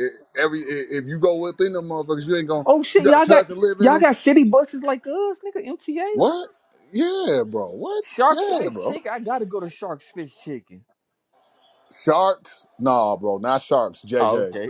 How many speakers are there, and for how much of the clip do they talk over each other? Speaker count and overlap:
two, about 18%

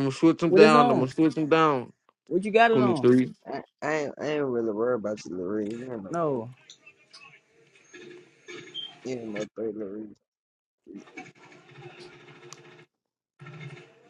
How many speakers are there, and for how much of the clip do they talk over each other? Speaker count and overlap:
three, about 8%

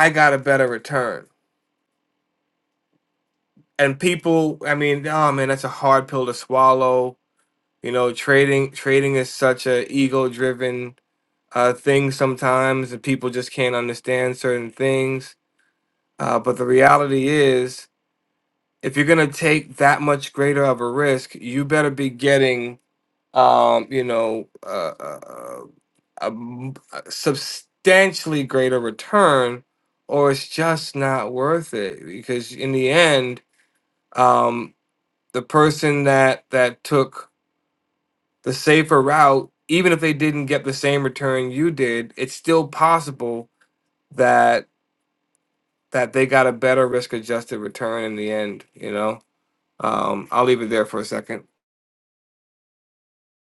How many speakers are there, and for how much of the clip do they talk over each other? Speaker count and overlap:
one, no overlap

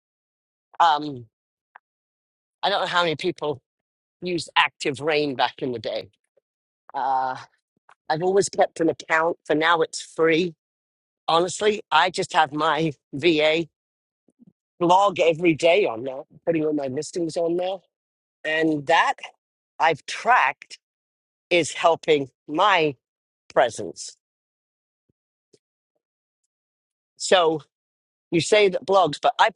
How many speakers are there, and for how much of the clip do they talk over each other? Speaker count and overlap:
one, no overlap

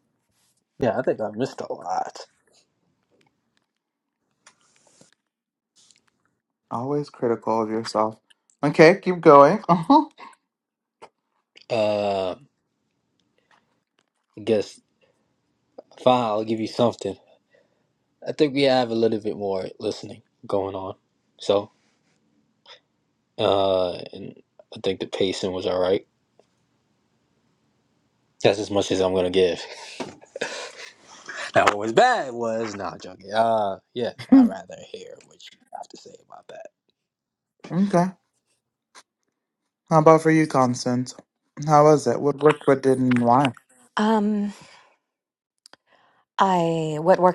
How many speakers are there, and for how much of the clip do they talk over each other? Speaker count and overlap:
three, no overlap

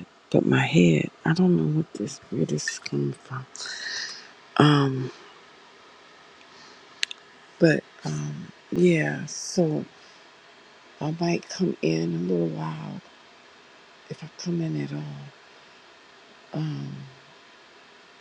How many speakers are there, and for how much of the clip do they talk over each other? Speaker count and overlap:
one, no overlap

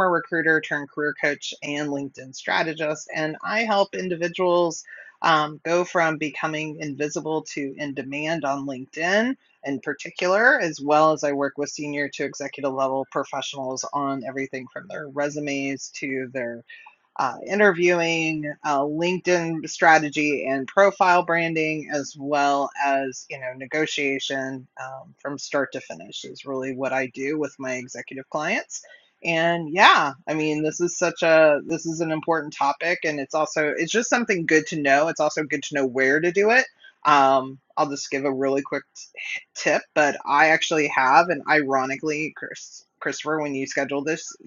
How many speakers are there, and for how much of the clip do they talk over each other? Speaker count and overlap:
one, no overlap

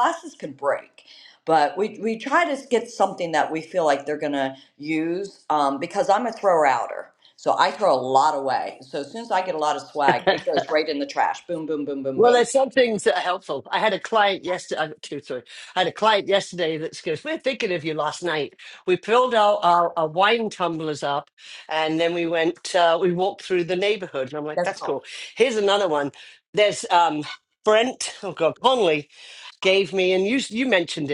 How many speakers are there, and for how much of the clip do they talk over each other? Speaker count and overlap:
two, about 2%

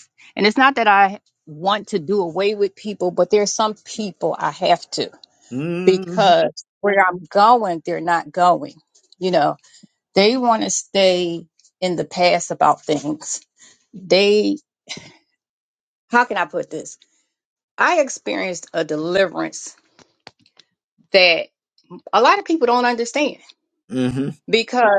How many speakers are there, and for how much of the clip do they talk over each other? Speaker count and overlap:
two, about 2%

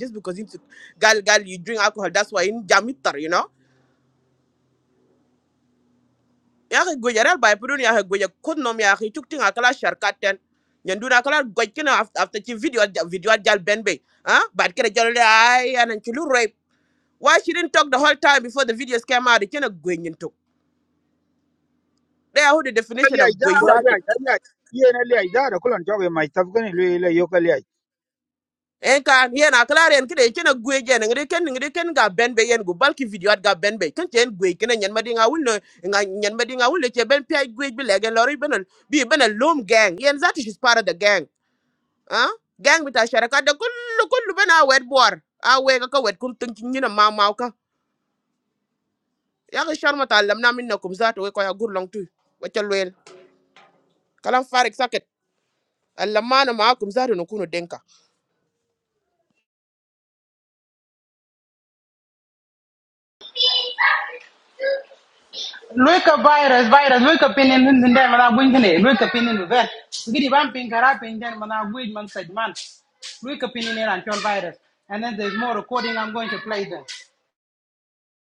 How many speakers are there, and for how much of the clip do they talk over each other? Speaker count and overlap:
three, about 1%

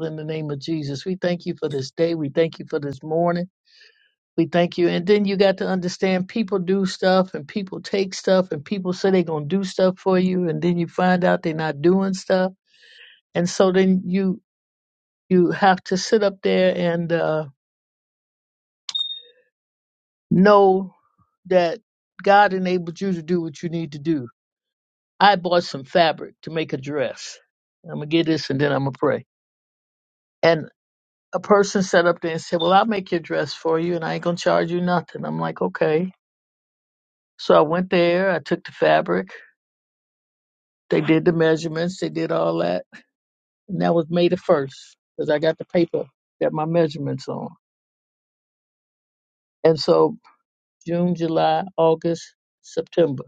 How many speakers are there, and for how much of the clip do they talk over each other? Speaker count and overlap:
one, no overlap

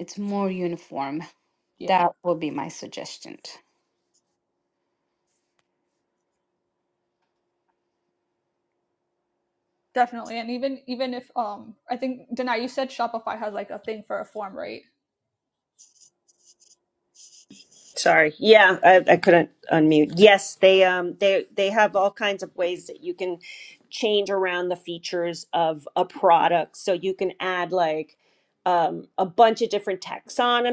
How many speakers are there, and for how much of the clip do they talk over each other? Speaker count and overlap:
three, under 1%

